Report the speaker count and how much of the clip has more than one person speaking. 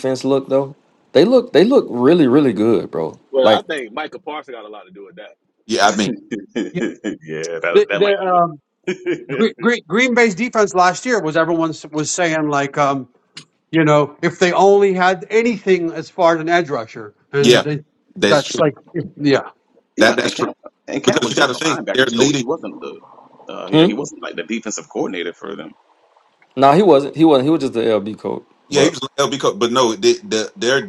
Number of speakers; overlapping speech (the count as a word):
five, about 14%